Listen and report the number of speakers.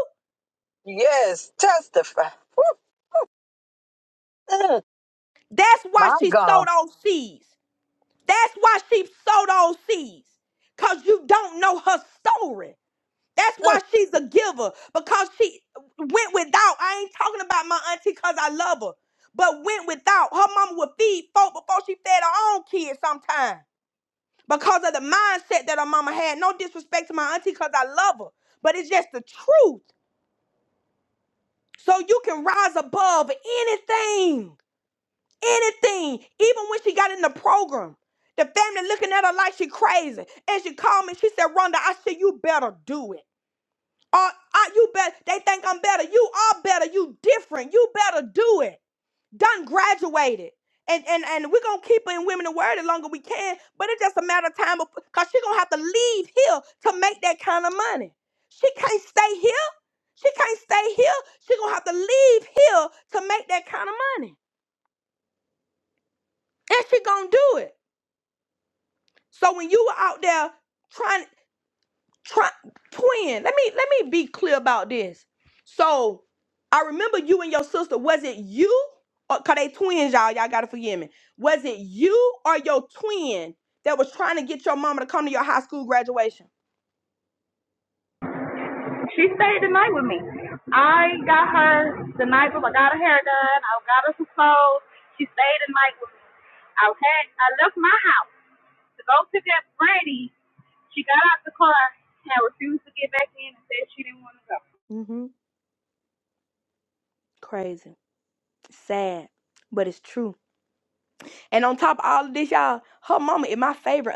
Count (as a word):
three